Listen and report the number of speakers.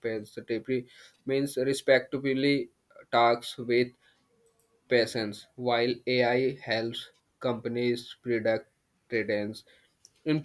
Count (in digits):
1